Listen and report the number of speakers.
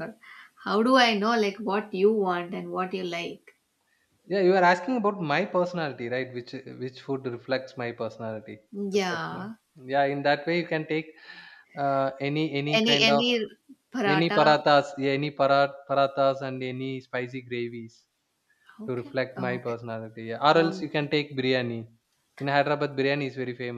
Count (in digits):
2